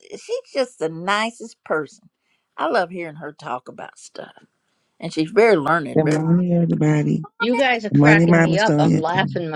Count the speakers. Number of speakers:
3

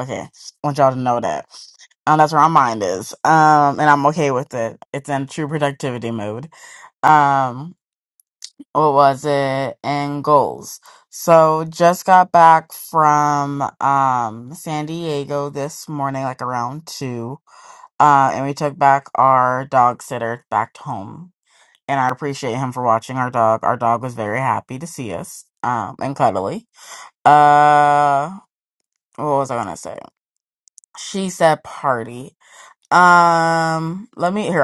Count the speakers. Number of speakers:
1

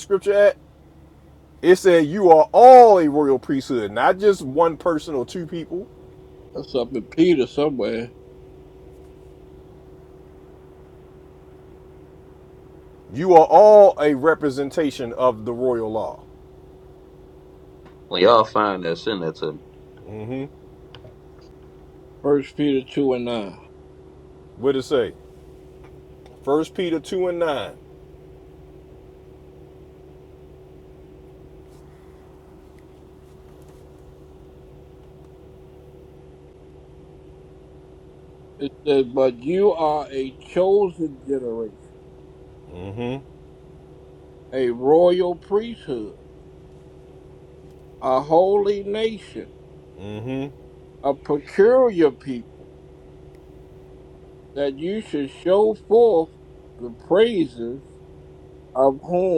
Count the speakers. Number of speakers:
3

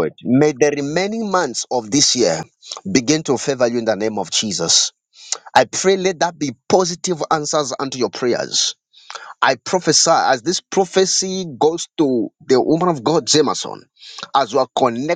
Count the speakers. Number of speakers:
1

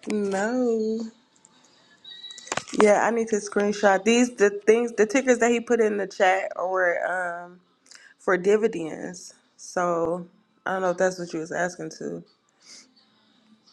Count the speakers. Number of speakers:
1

